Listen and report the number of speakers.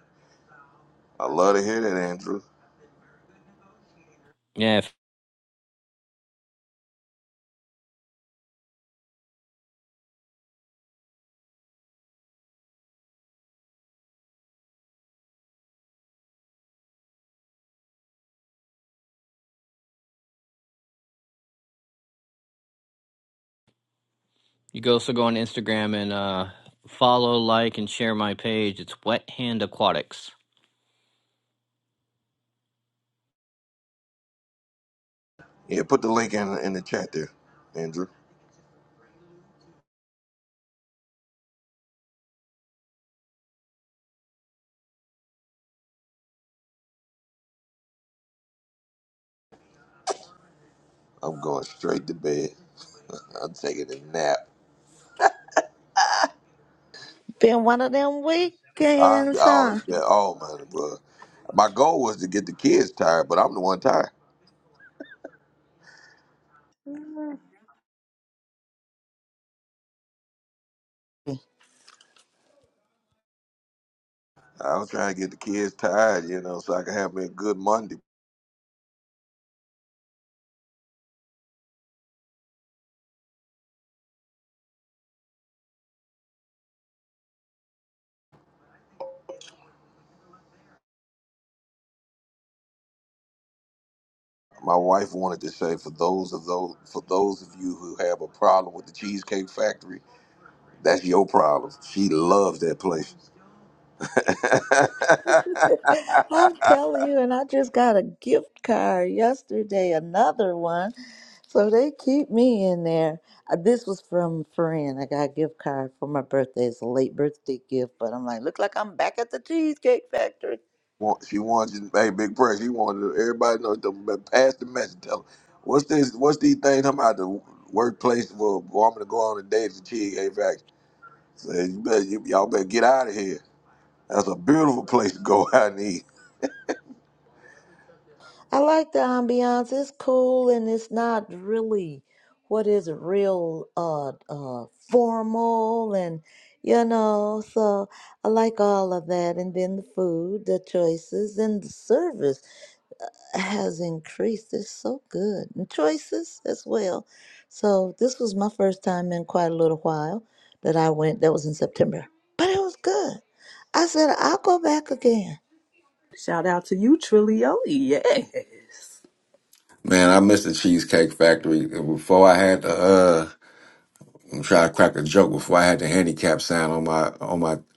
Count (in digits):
5